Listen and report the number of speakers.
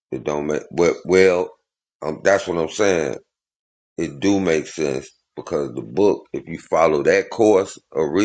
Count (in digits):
1